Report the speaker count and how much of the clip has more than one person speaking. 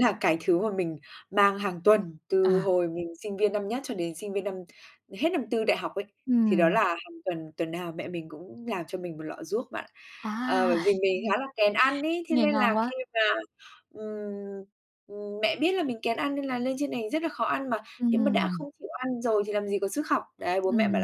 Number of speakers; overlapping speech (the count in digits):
2, about 10%